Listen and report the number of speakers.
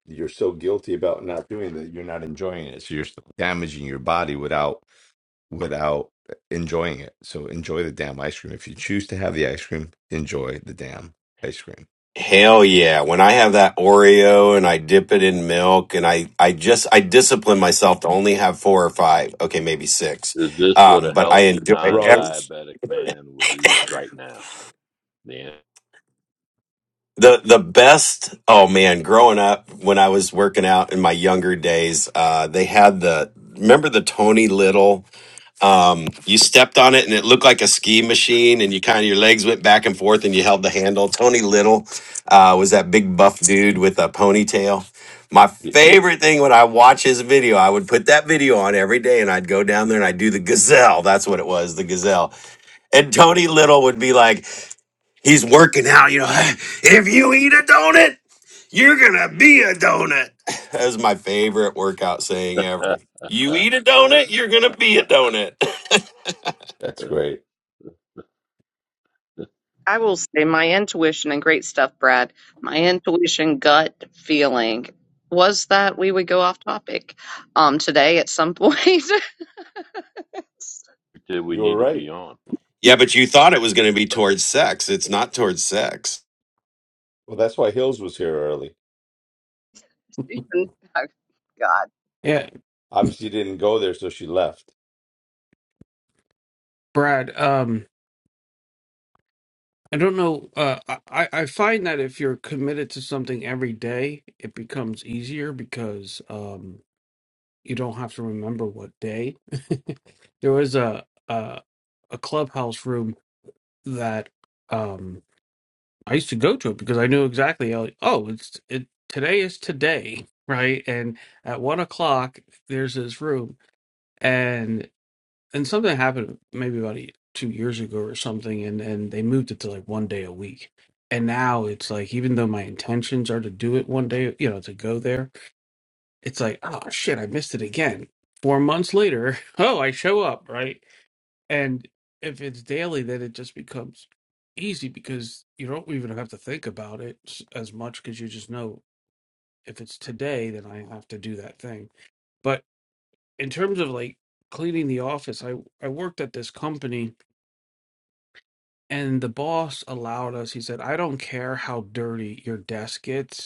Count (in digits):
5